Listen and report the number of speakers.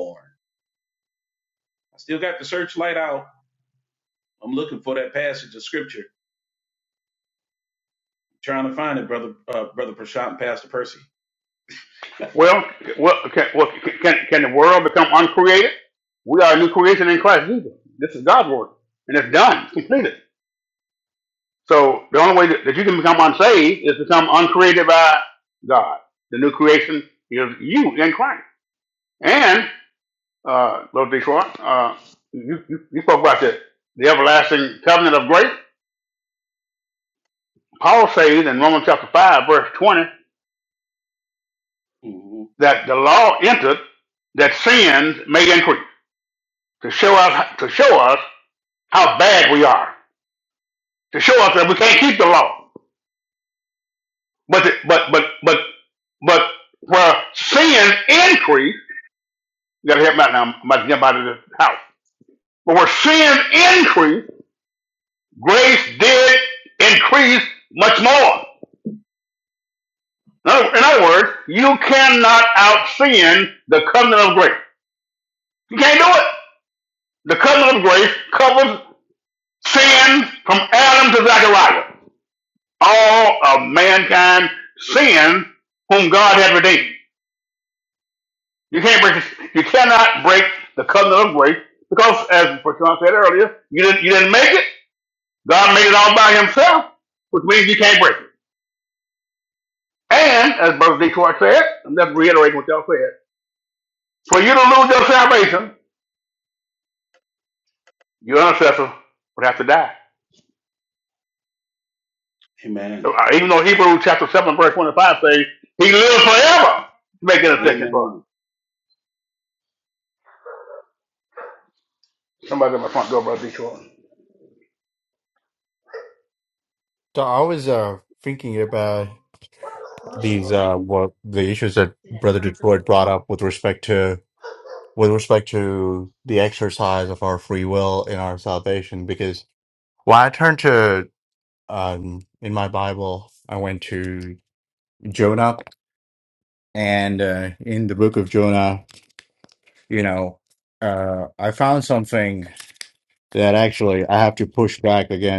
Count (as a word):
three